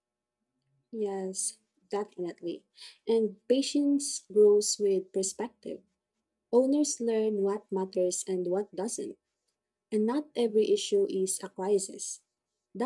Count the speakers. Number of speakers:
1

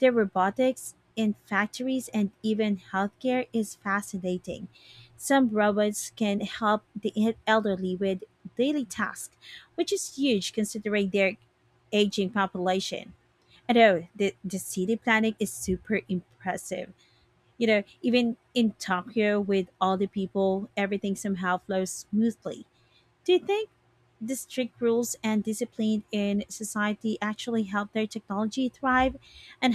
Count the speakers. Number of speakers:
1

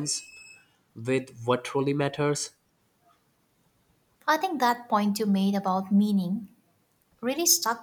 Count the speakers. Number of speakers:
2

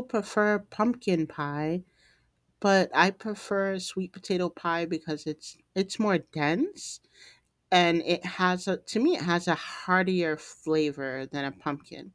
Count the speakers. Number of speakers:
1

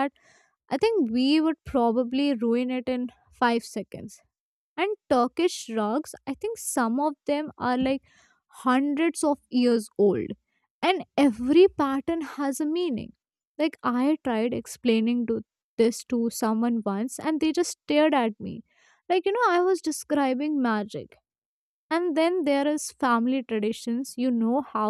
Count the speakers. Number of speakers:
1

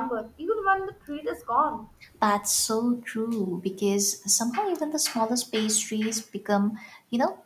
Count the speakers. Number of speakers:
2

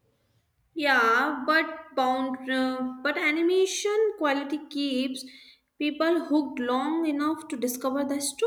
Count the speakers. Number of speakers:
1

